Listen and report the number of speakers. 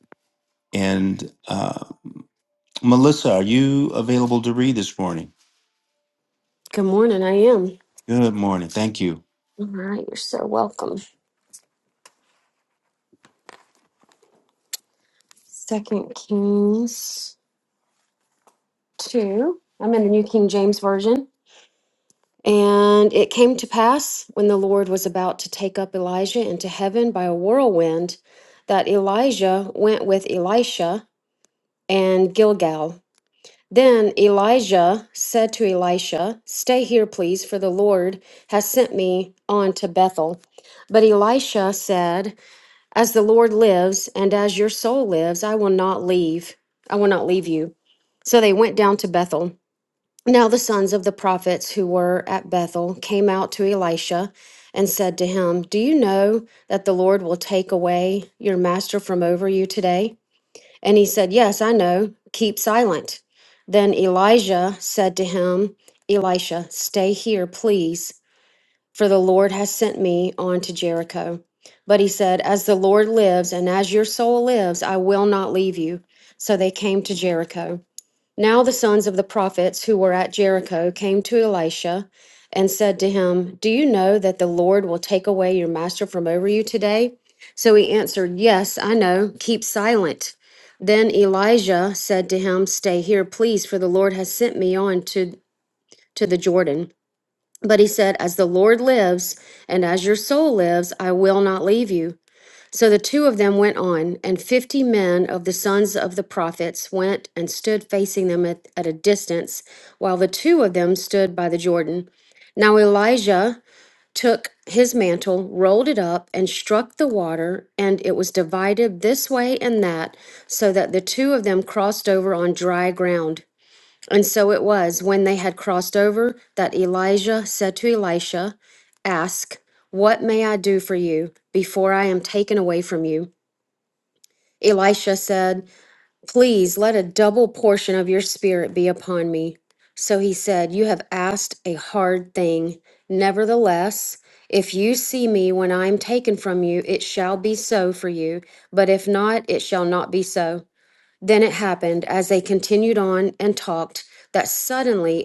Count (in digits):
2